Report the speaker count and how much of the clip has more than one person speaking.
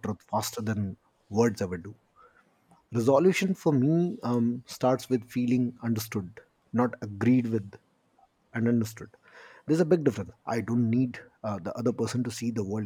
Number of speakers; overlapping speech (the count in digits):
1, no overlap